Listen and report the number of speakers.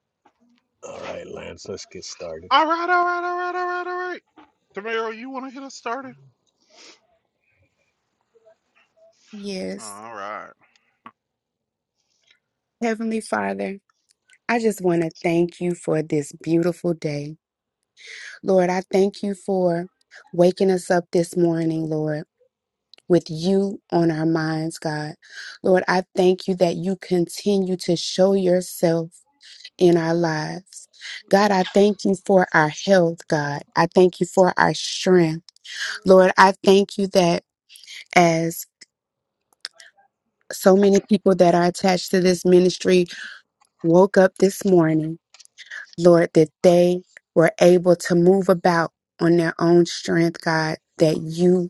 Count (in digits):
3